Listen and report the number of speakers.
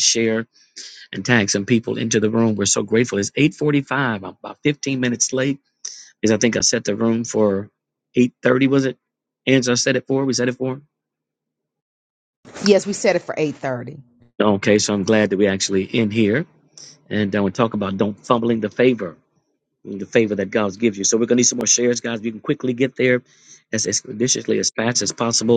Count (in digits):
2